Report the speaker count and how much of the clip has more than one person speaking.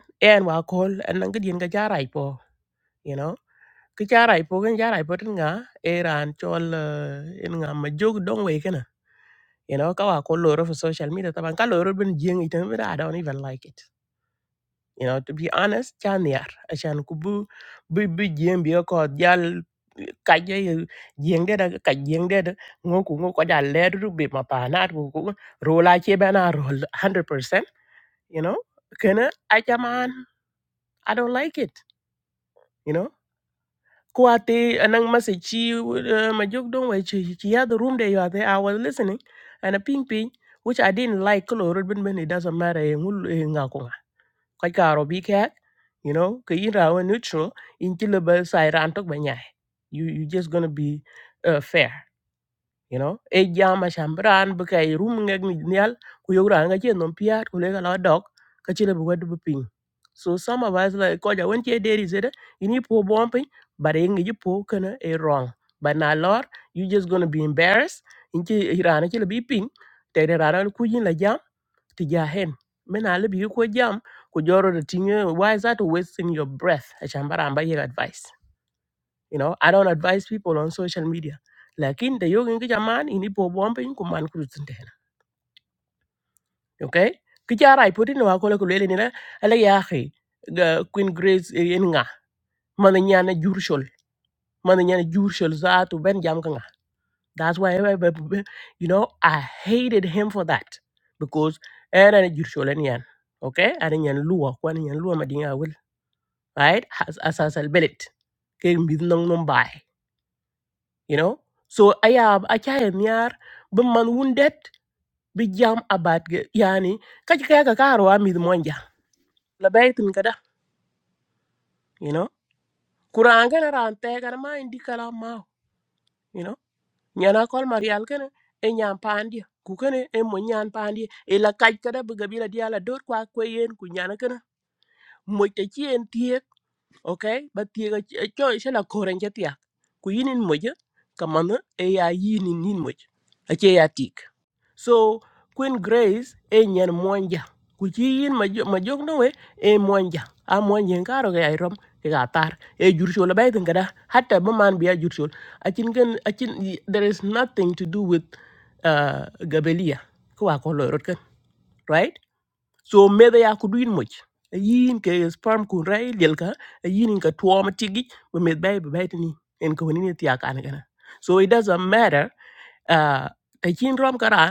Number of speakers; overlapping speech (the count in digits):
1, no overlap